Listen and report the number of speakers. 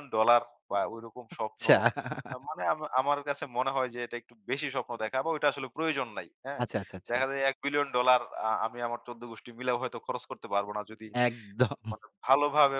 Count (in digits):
2